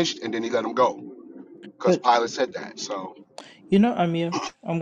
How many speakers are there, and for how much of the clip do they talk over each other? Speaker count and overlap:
two, about 4%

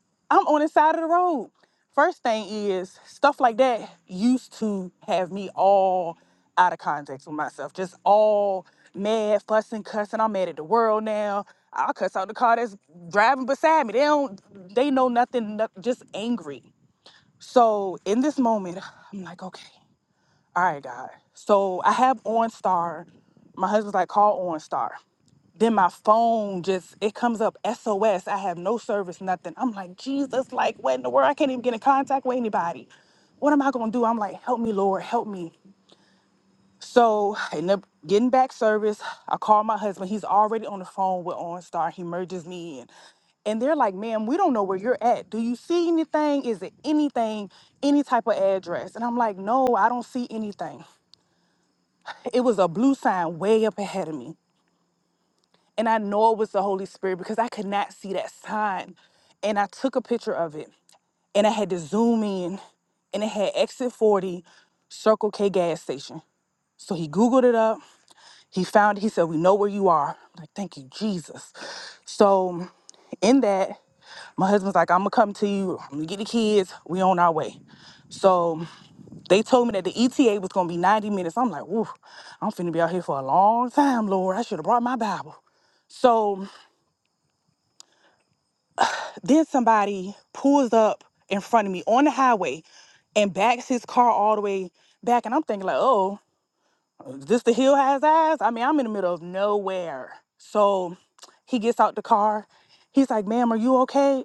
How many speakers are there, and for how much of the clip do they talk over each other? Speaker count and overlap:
one, no overlap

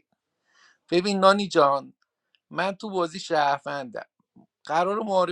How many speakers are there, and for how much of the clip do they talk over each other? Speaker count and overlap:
one, no overlap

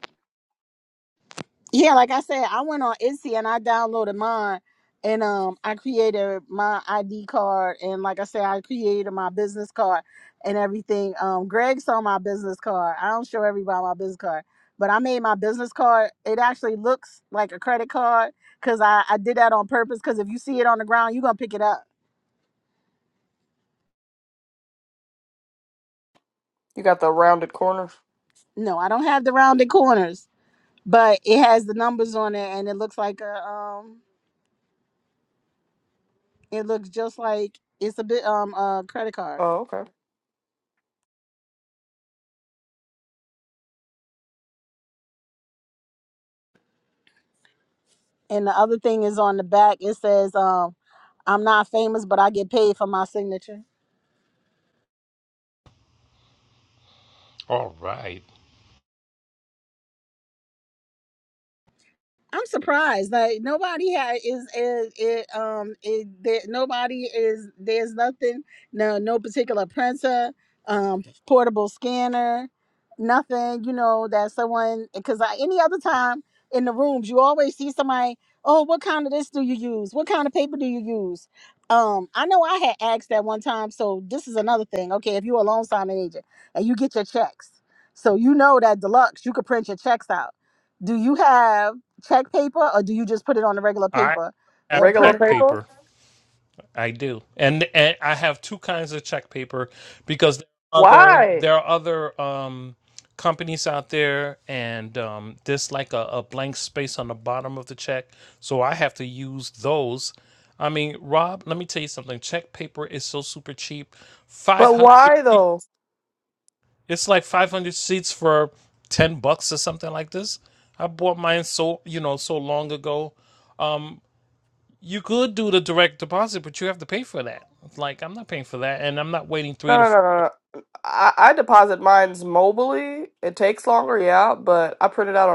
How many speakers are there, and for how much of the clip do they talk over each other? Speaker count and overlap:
three, about 2%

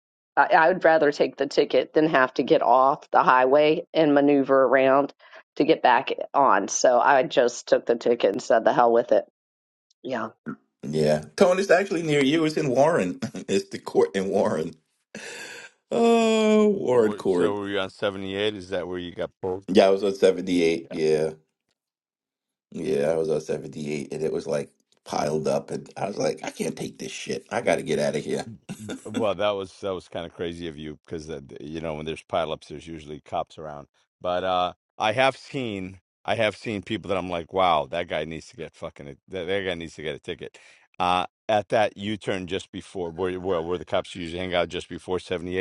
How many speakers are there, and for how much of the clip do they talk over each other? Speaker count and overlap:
three, about 1%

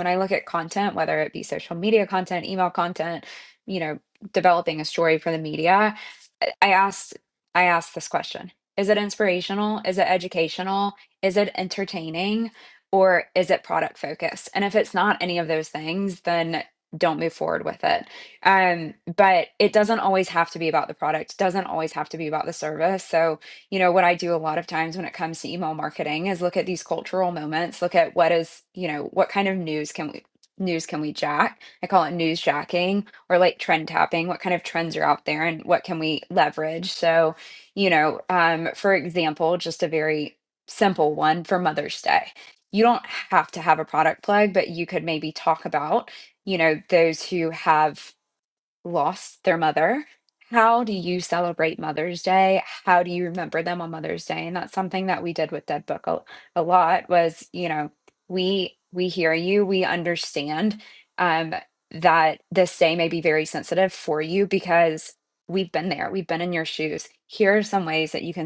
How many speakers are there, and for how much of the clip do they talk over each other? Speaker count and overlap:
one, no overlap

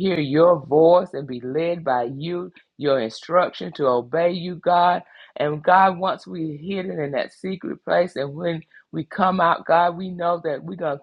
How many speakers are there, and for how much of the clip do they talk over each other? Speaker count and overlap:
one, no overlap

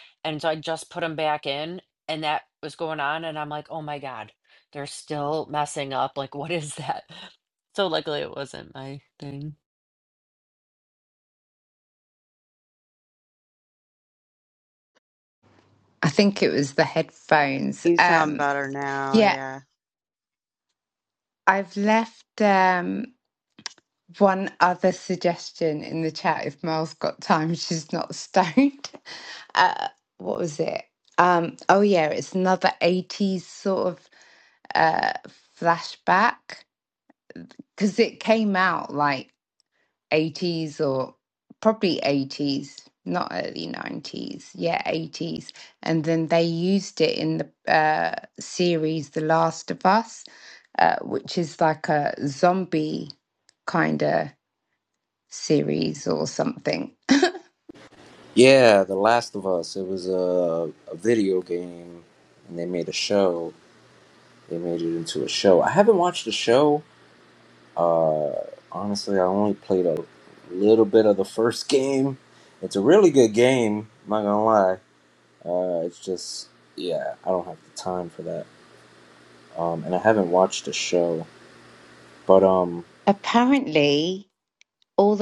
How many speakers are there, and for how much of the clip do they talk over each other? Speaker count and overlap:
four, about 1%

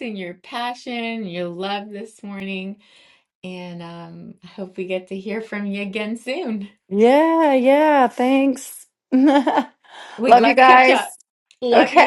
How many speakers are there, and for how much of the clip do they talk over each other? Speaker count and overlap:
two, about 8%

